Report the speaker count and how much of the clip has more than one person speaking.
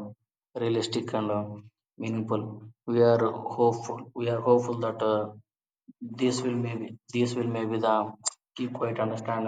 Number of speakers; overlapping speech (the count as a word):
one, no overlap